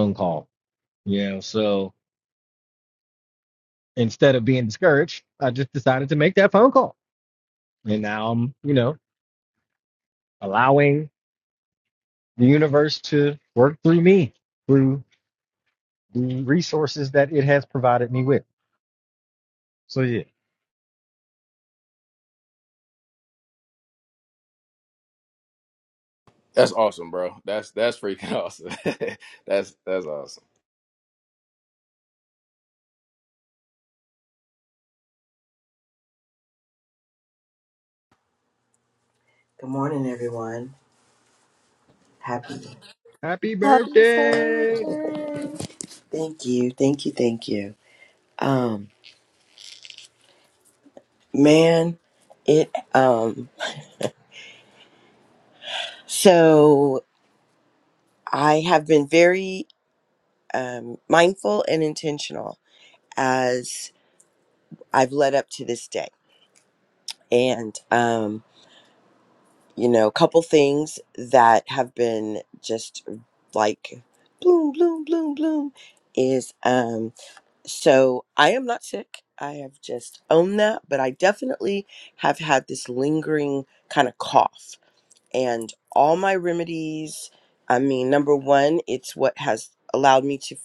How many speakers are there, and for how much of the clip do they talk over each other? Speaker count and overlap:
4, about 1%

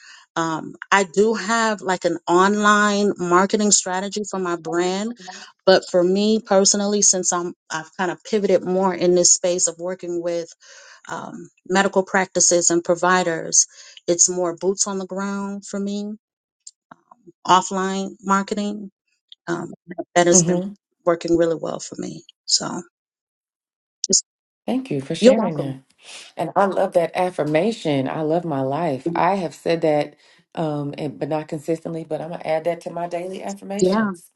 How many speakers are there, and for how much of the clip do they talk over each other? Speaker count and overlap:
2, about 3%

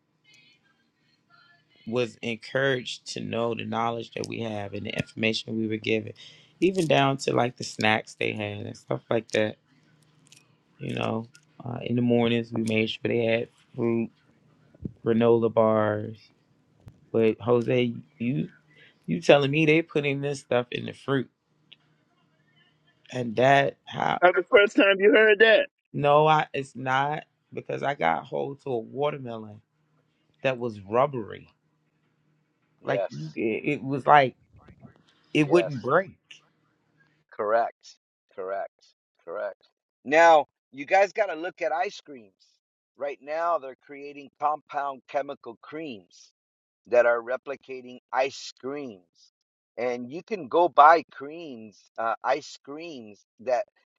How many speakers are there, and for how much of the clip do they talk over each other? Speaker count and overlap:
3, about 1%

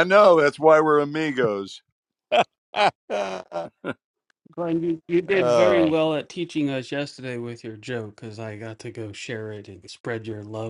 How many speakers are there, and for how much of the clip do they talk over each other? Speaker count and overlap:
3, about 7%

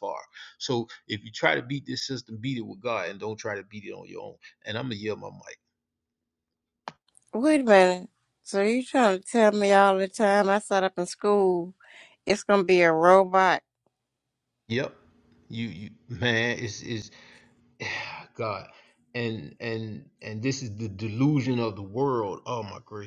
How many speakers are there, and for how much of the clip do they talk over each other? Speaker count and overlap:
2, no overlap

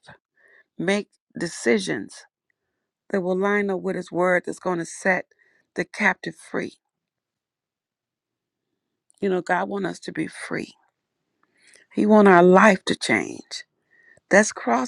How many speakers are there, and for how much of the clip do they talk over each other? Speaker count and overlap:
1, no overlap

